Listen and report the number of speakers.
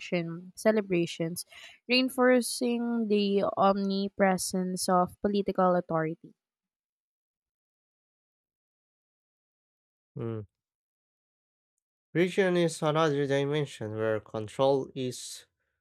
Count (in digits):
2